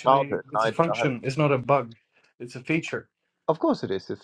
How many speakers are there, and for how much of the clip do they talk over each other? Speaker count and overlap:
2, about 26%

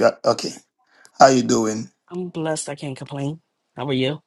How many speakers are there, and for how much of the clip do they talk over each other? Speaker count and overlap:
2, no overlap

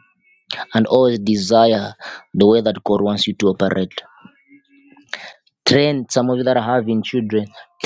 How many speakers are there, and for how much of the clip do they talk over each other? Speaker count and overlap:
1, no overlap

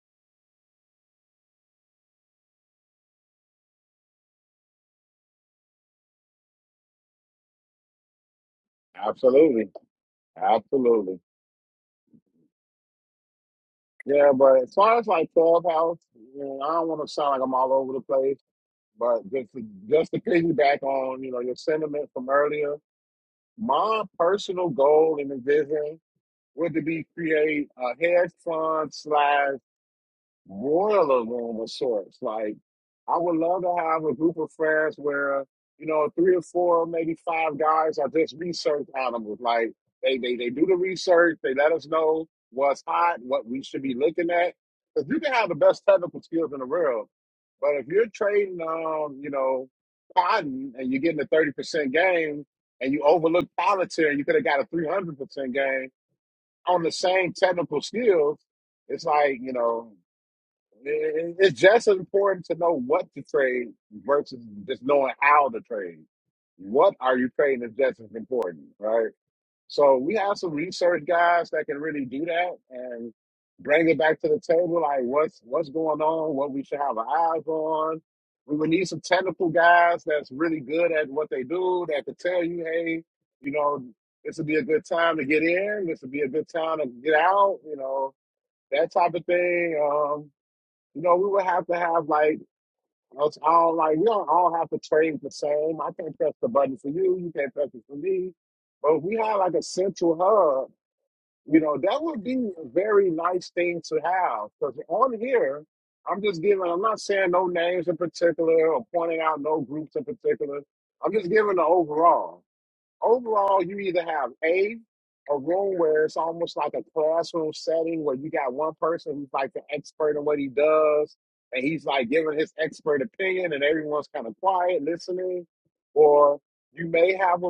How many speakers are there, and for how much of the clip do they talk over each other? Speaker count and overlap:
1, no overlap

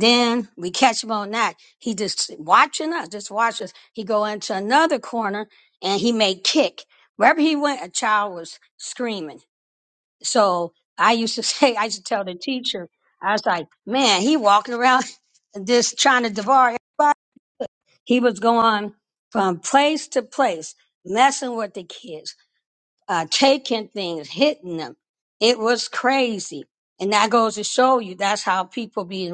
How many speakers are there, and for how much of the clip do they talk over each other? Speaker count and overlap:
1, no overlap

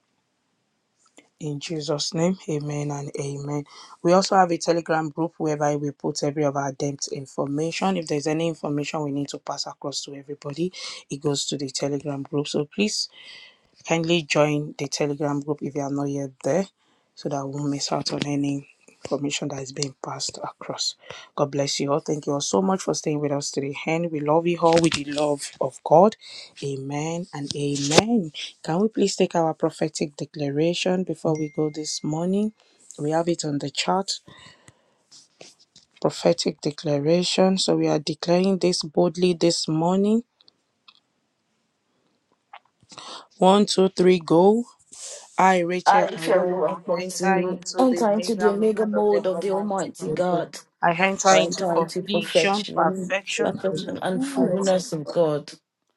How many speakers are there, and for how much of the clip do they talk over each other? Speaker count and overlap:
2, about 14%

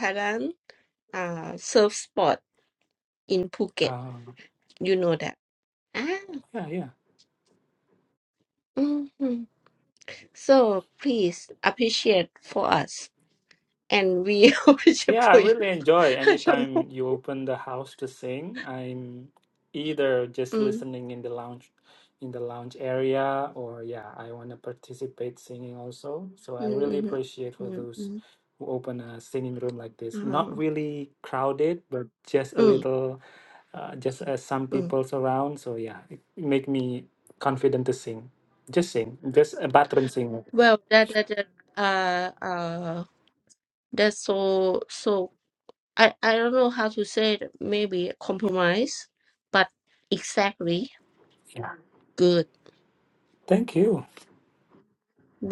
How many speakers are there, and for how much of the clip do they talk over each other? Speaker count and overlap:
2, about 6%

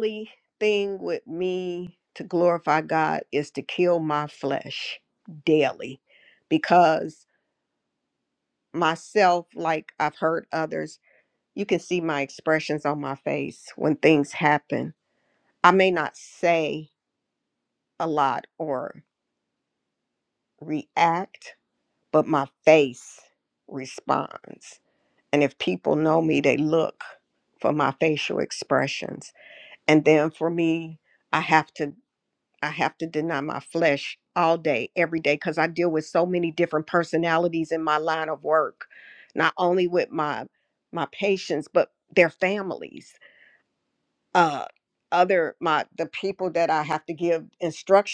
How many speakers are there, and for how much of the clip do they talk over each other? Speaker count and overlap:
1, no overlap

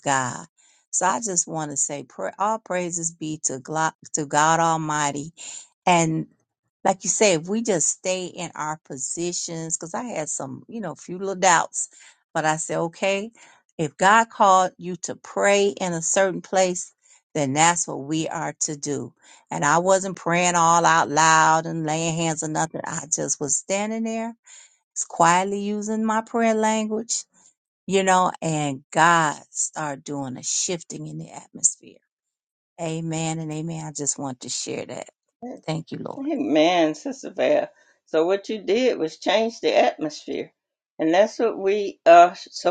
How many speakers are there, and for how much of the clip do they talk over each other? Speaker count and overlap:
2, under 1%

